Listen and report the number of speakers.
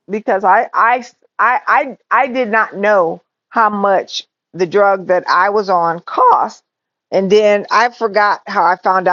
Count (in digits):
1